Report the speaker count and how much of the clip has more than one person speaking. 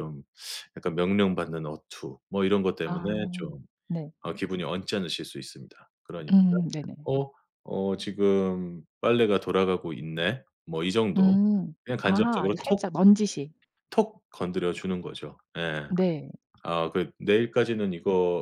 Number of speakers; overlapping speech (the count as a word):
two, about 8%